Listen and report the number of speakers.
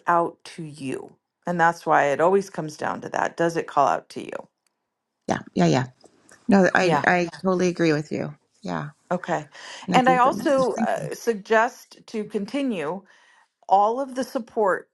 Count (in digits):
2